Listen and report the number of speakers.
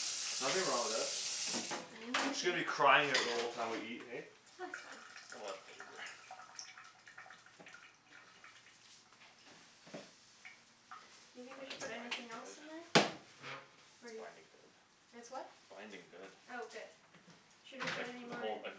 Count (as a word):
three